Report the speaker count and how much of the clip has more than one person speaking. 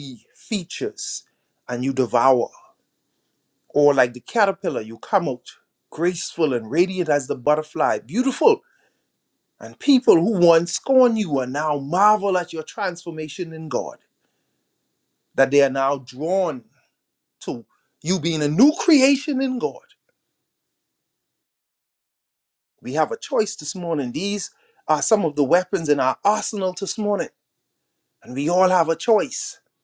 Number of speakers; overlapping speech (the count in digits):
1, no overlap